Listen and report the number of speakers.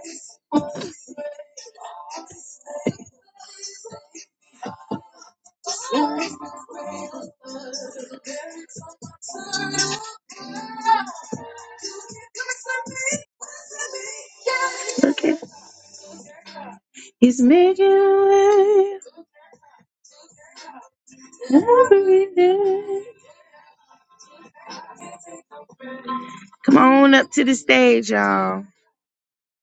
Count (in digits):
1